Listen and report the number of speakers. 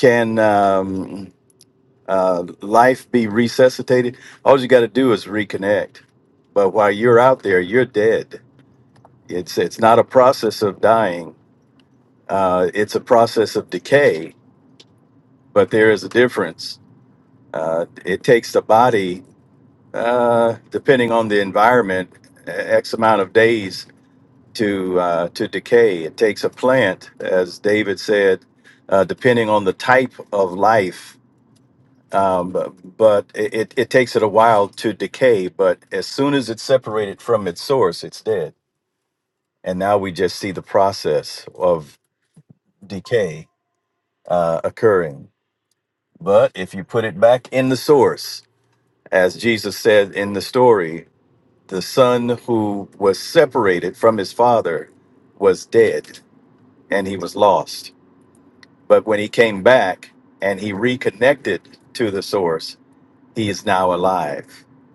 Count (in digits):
1